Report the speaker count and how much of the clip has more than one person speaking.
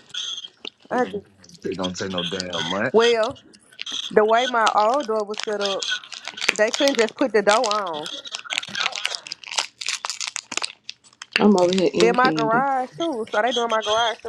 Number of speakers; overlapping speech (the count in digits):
3, about 4%